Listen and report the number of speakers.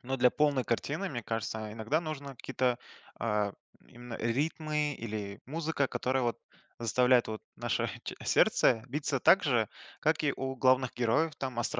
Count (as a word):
one